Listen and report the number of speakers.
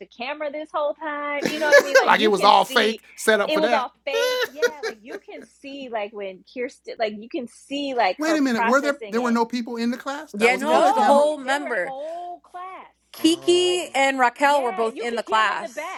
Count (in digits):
3